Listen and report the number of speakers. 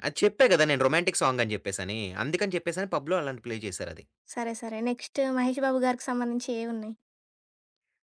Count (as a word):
two